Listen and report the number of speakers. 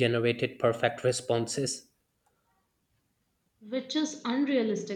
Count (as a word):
two